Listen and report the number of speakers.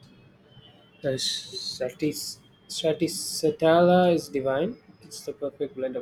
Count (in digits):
1